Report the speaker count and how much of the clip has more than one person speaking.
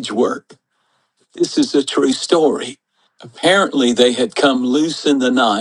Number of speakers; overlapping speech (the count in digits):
1, no overlap